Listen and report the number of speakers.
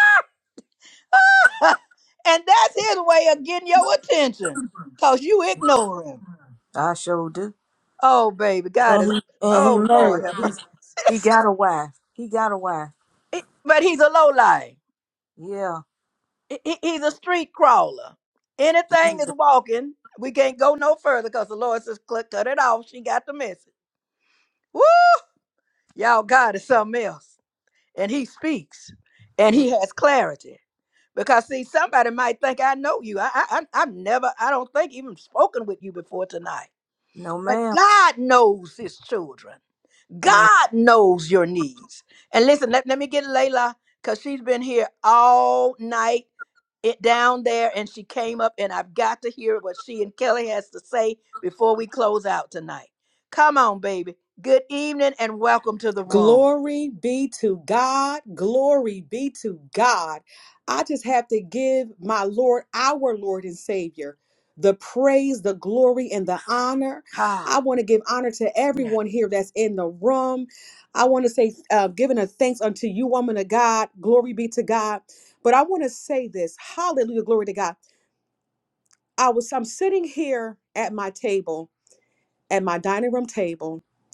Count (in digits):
3